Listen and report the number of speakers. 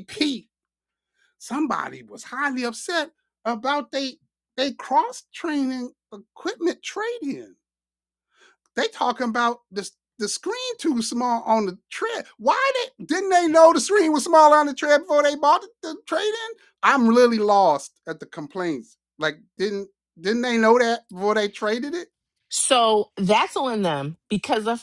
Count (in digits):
2